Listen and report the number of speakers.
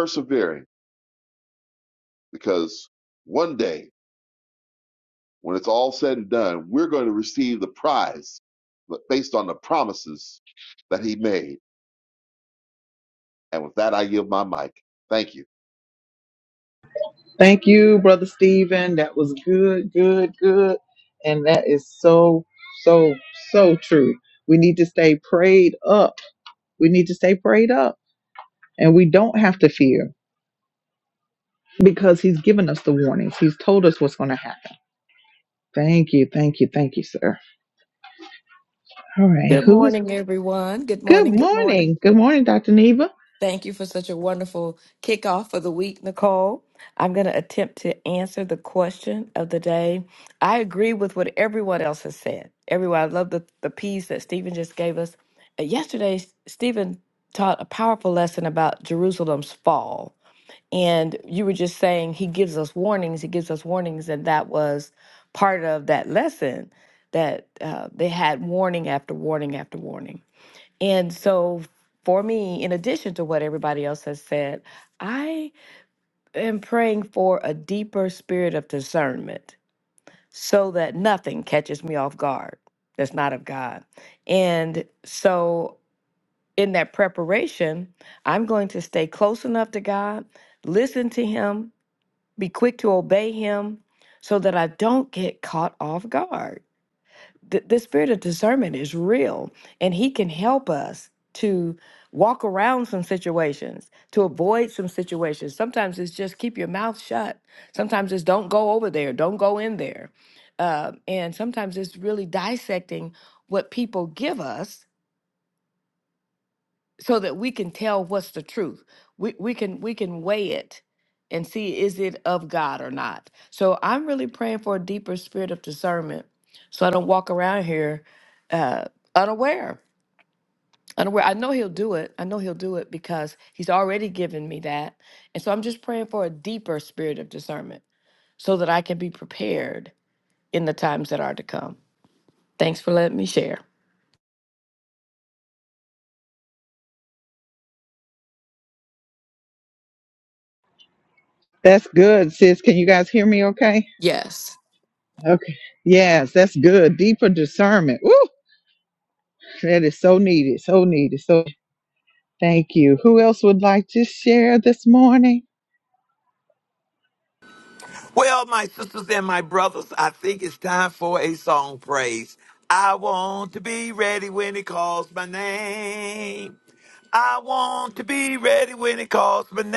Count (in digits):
4